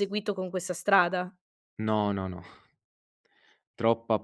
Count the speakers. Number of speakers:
two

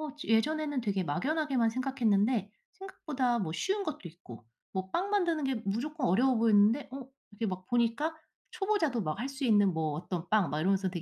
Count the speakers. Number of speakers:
one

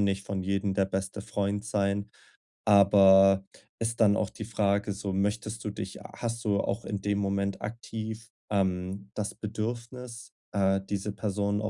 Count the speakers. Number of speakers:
one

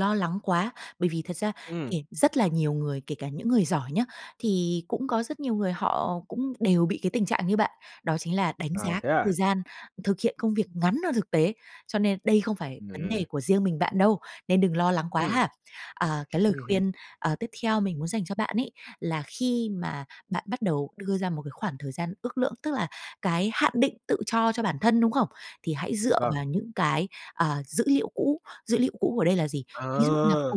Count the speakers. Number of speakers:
two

